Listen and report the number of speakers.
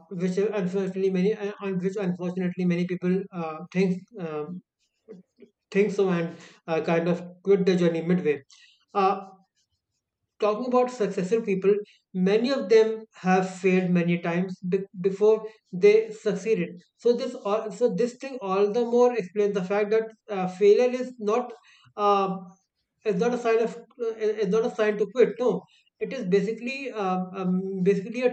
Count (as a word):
one